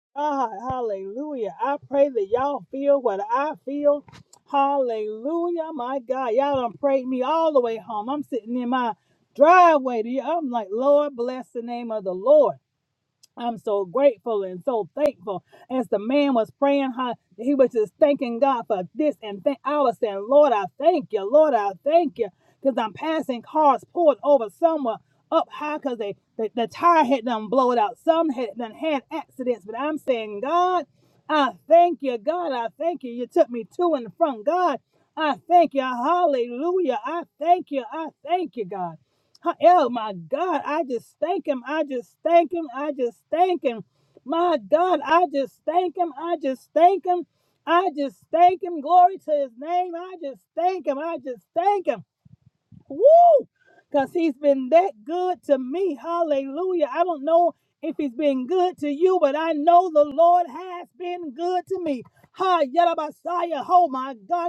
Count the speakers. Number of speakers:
1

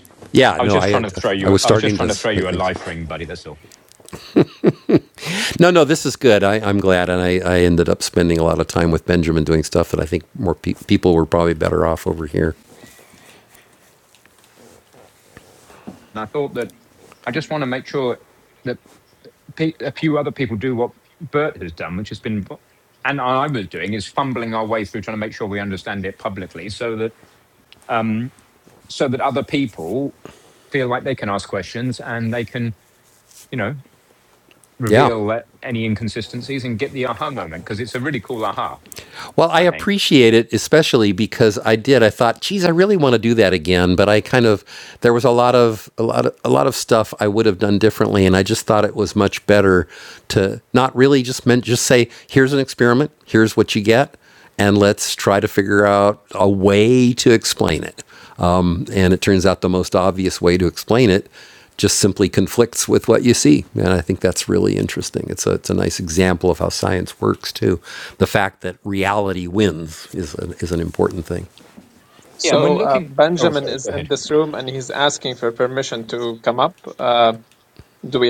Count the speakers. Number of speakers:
3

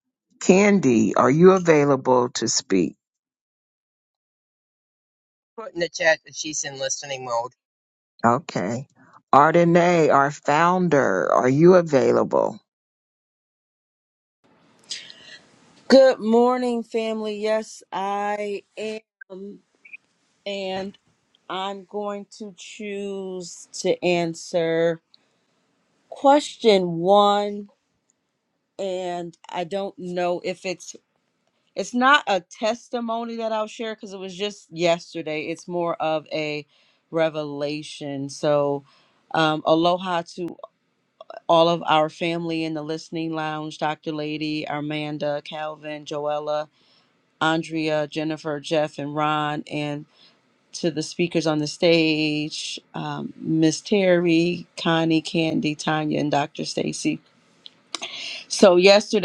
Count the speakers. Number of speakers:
3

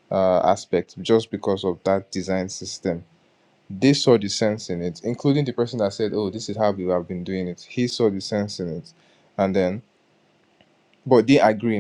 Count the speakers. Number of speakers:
1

